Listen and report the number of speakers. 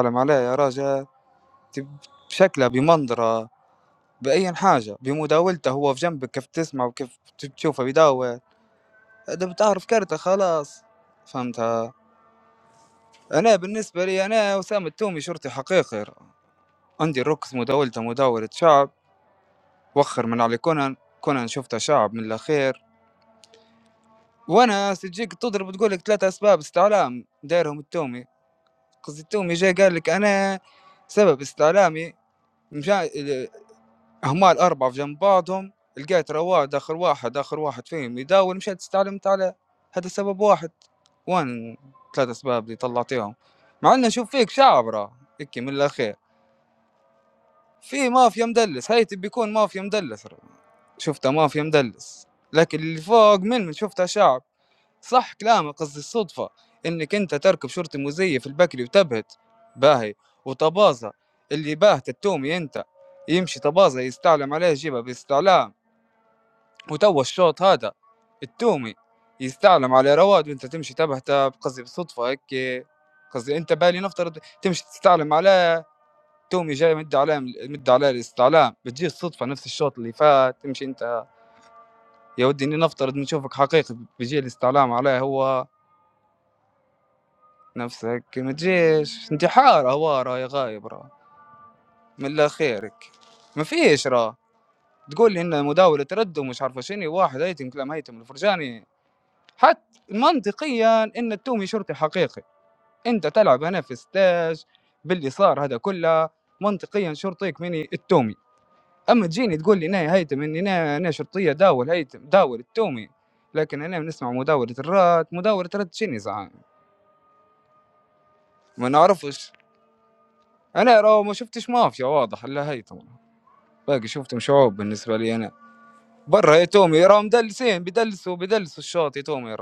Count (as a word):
one